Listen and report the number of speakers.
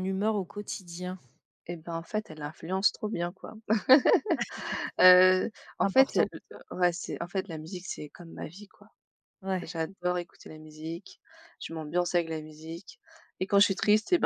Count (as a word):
two